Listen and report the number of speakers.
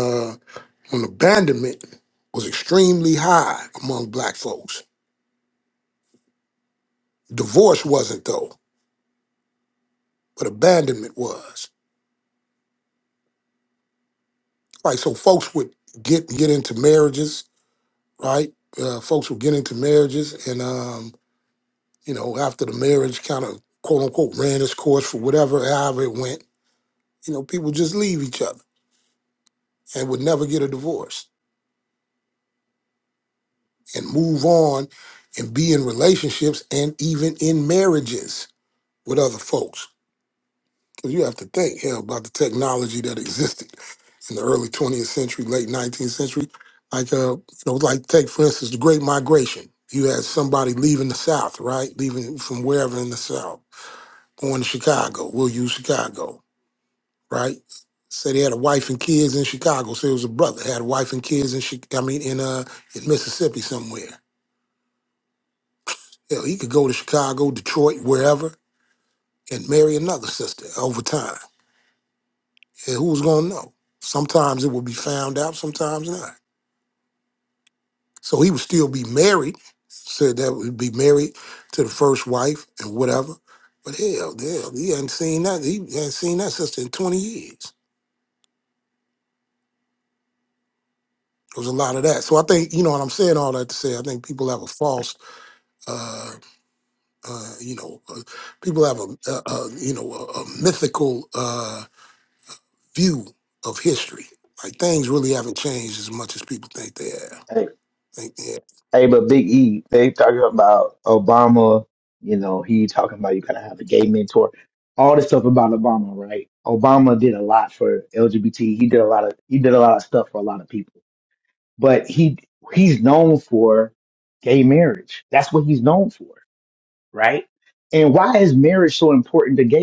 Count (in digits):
2